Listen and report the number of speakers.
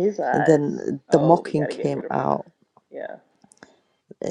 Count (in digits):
2